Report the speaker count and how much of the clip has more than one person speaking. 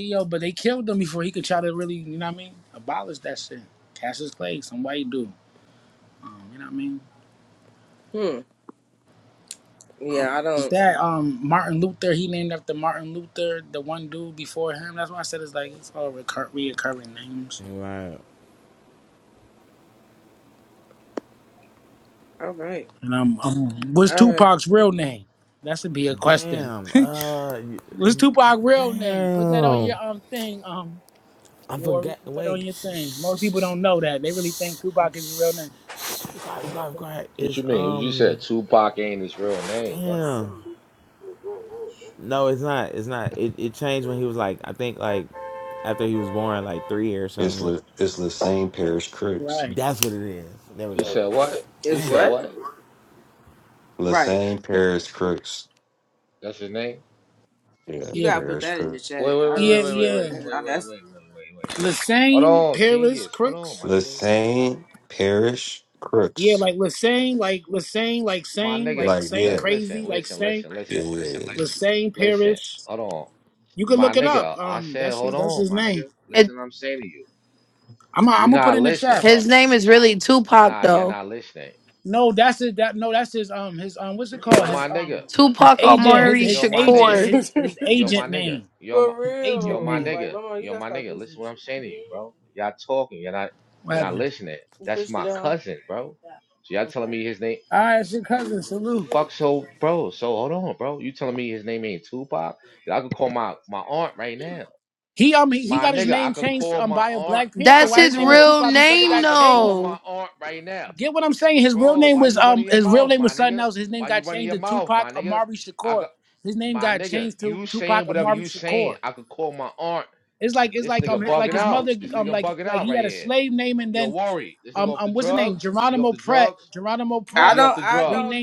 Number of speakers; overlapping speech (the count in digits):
6, about 32%